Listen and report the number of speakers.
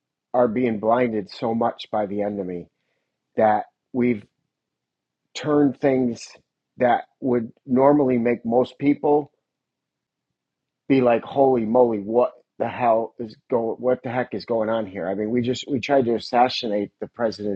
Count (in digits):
1